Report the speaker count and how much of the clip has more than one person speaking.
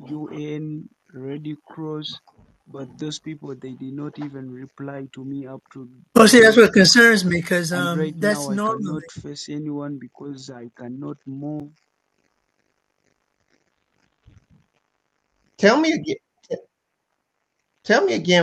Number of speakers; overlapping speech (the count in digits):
3, about 10%